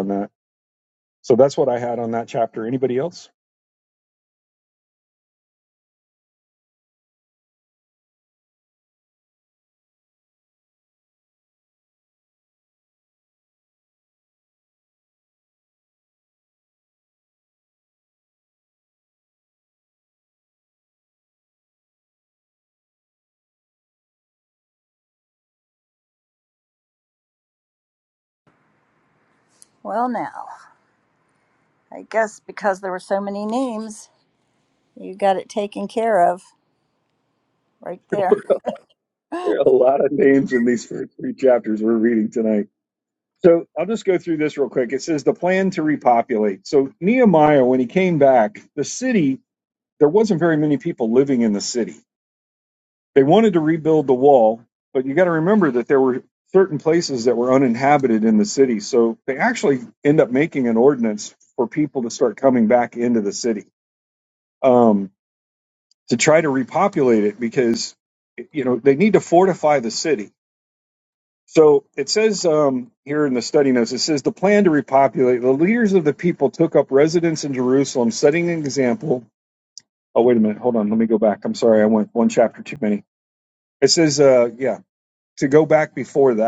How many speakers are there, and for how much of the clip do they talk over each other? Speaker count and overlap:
two, no overlap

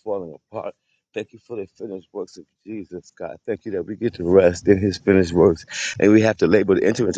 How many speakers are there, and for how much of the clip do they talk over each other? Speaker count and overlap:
one, no overlap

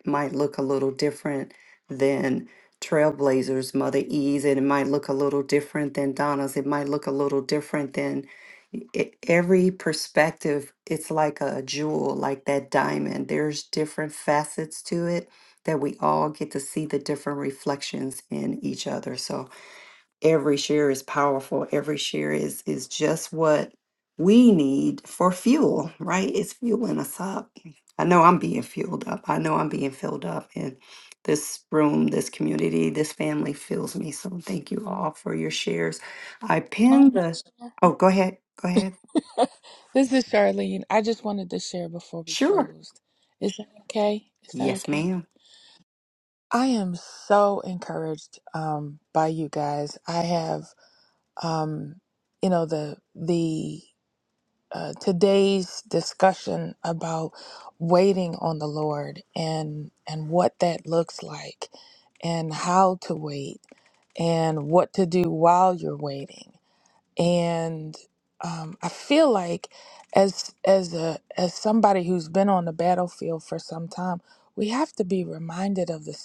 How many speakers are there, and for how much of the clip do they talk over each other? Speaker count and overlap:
two, about 1%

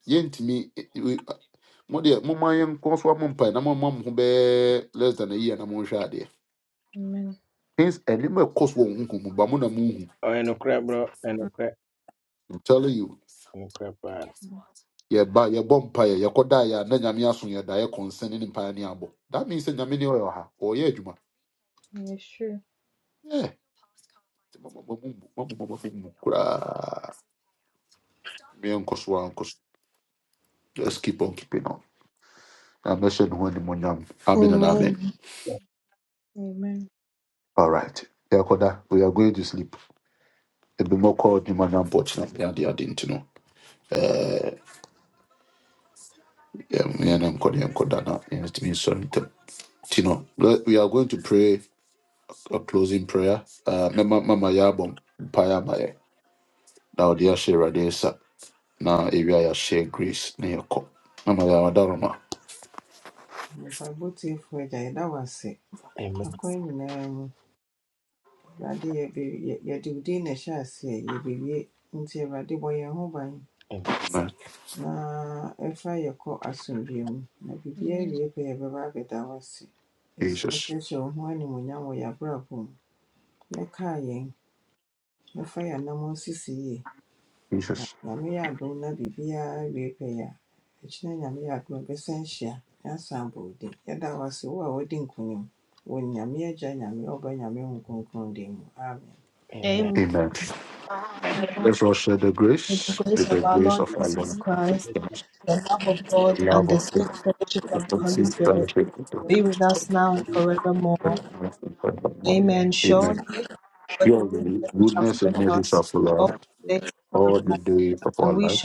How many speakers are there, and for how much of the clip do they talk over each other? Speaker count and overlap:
five, about 8%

